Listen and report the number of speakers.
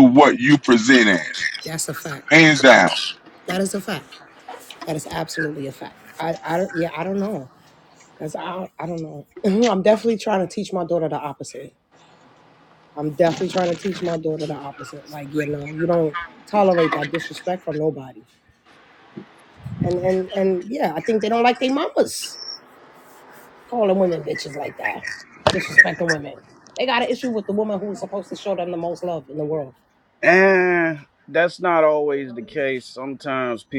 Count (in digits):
3